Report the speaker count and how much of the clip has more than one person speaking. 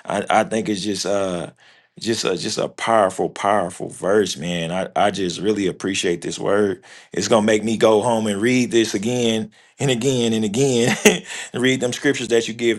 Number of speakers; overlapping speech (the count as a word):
one, no overlap